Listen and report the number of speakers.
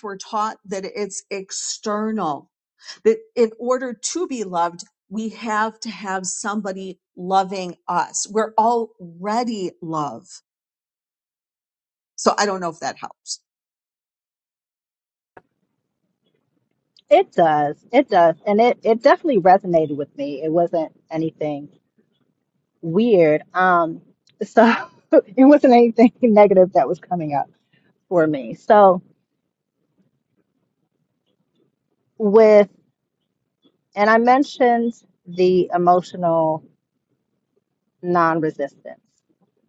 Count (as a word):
two